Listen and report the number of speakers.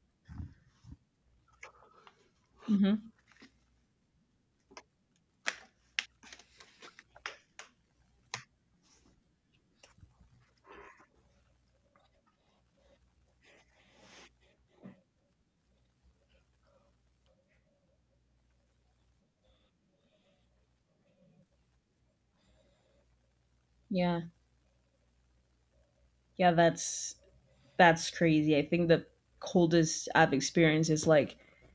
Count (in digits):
1